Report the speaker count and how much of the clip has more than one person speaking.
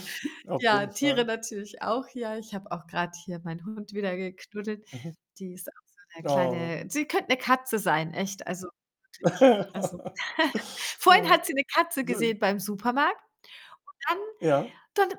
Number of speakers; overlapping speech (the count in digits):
2, about 12%